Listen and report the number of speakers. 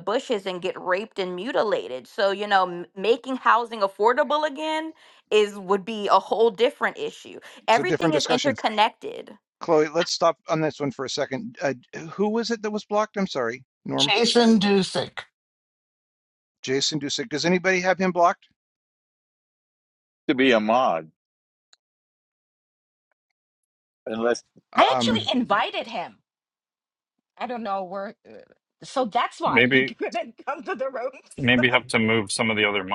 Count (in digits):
6